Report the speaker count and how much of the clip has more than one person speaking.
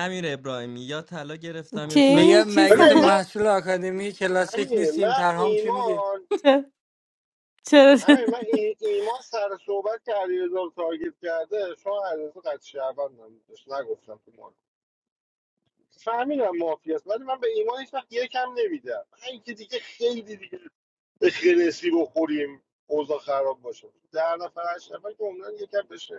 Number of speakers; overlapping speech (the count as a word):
four, about 12%